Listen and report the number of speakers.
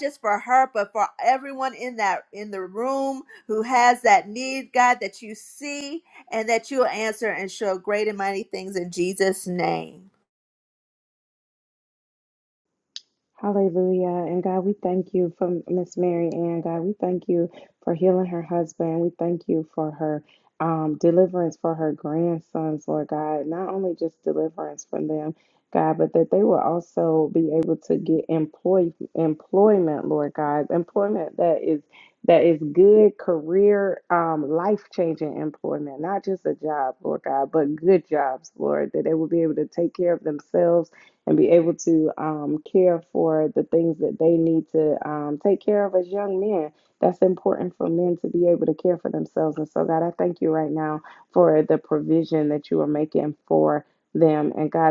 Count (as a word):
two